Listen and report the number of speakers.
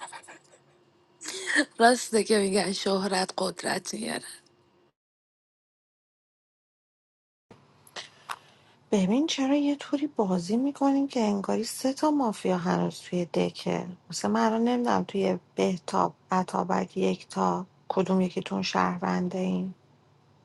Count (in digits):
2